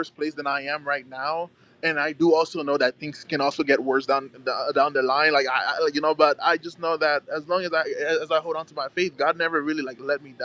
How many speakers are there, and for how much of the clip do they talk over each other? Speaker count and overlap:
one, no overlap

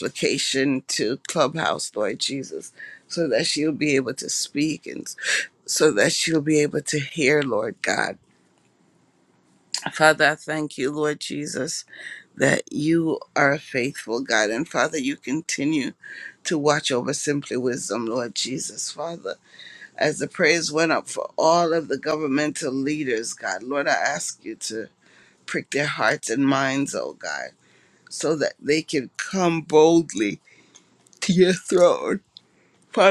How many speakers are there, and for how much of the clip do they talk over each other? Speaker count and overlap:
one, no overlap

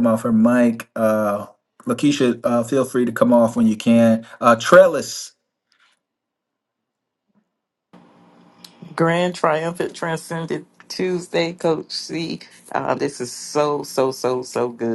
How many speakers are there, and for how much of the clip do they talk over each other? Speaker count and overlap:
two, no overlap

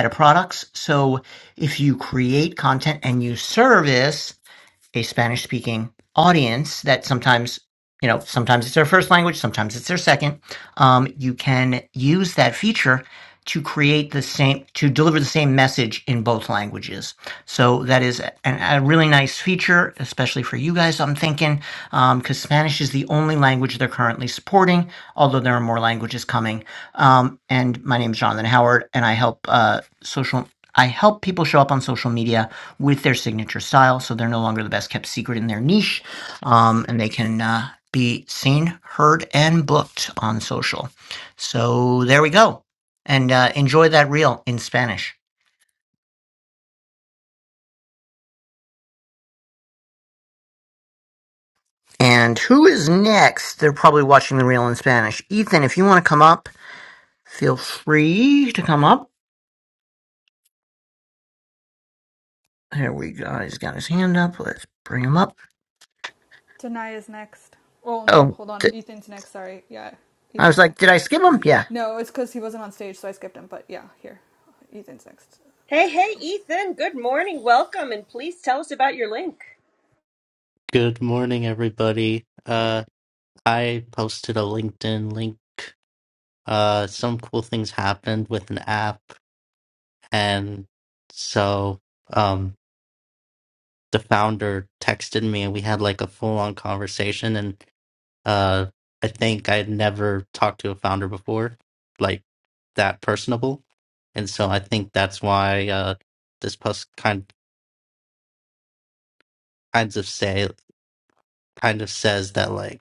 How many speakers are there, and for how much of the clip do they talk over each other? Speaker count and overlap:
four, about 1%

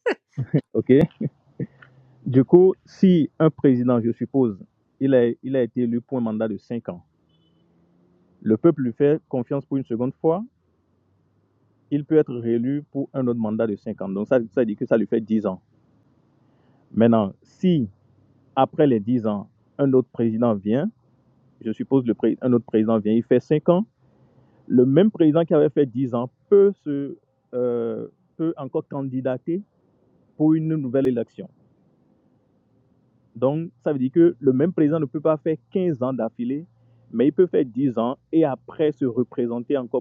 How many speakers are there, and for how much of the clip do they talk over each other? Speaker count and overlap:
one, no overlap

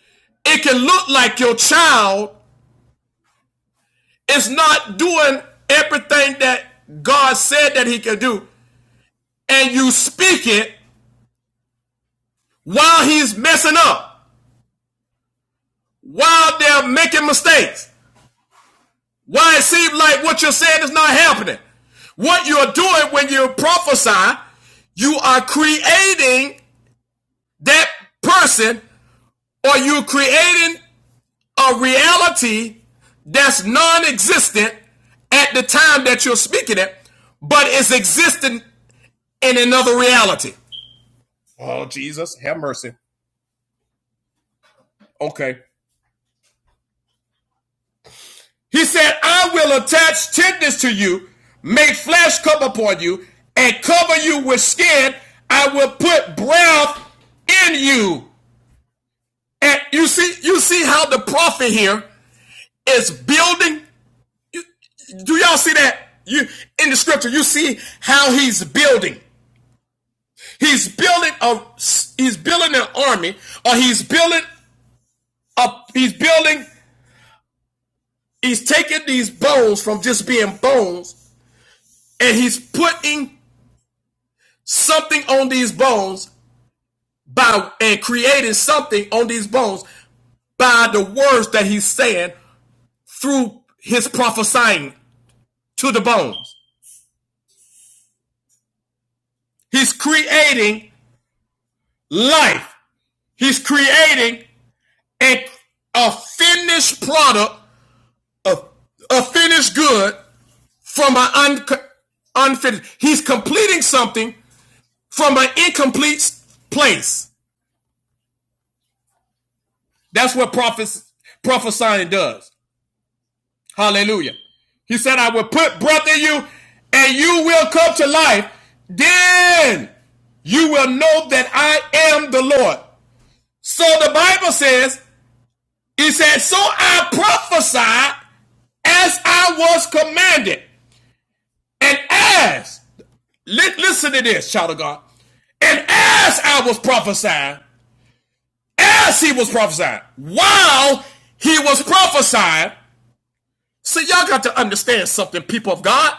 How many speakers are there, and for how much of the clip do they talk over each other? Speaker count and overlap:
one, no overlap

